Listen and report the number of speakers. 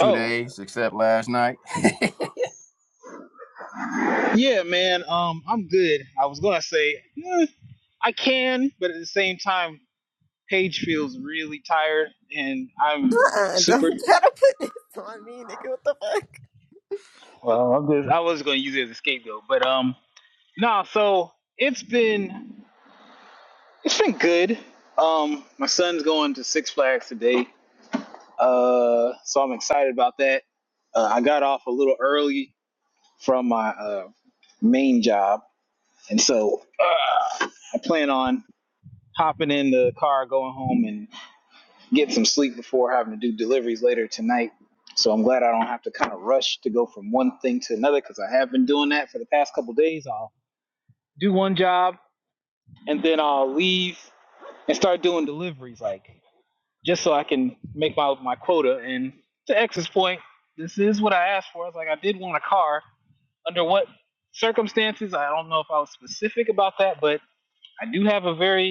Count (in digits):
3